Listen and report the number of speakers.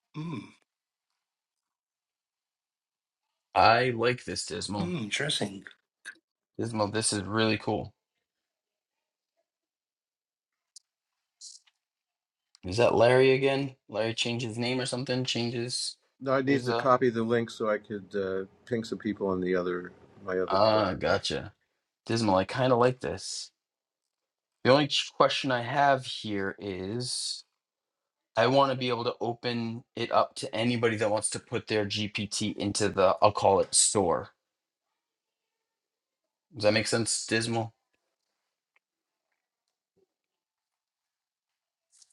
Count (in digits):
3